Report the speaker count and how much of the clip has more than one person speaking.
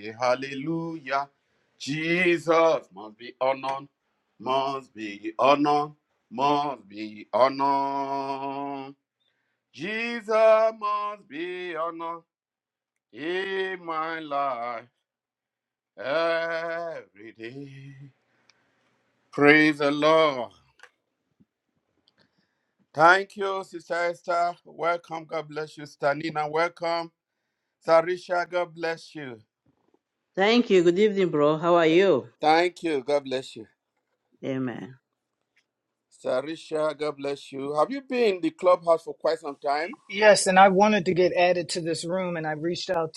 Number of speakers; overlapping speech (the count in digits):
3, no overlap